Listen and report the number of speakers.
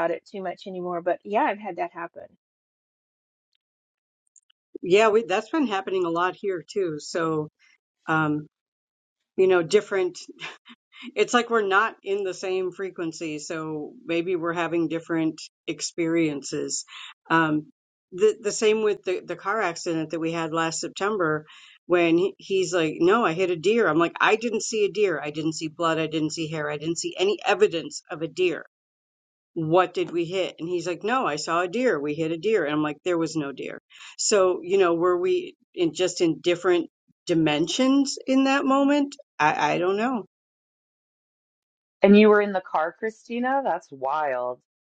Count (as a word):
three